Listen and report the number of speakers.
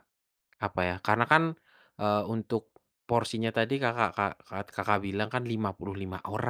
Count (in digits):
1